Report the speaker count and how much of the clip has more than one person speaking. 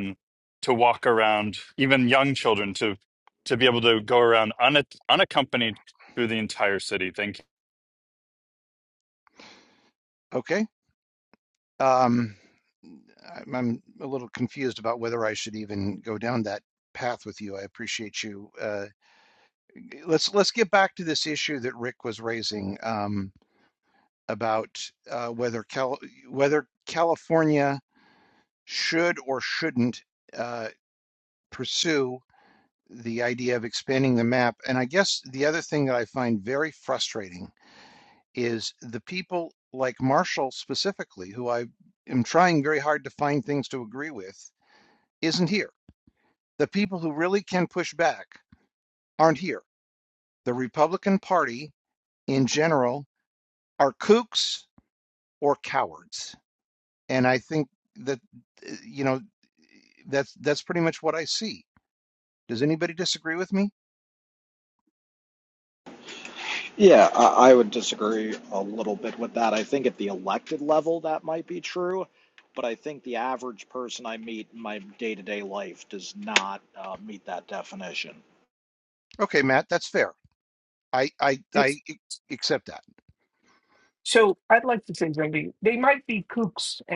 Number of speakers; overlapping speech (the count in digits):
4, under 1%